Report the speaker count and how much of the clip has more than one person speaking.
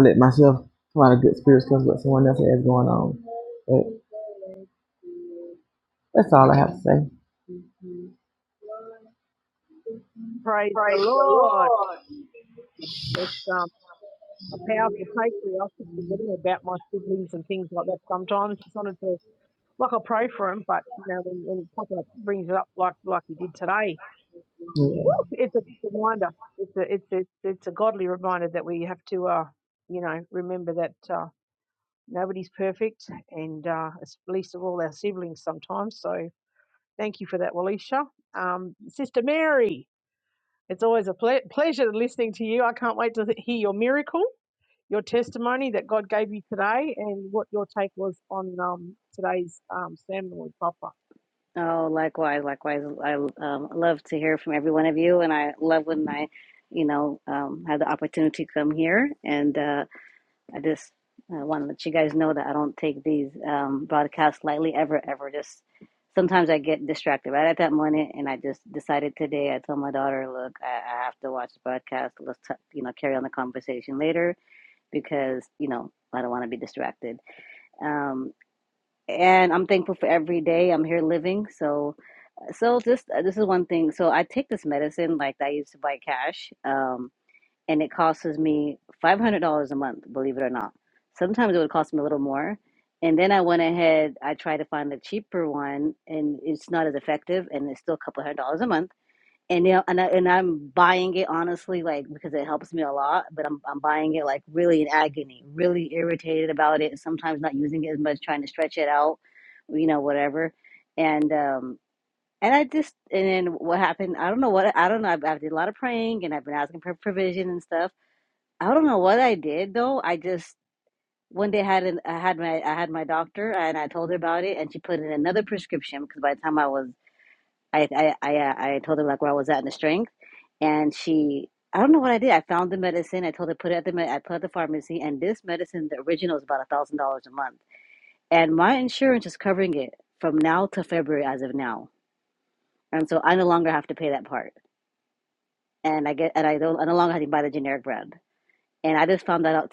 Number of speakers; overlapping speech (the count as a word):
three, under 1%